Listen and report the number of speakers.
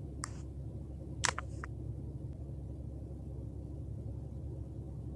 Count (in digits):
0